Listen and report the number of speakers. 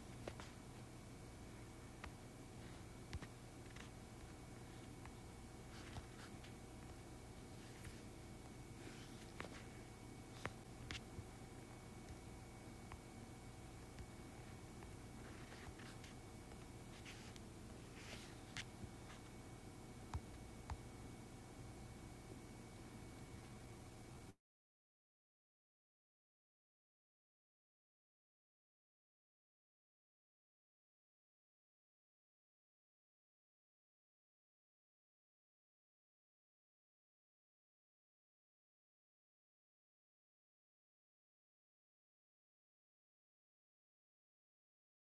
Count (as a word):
zero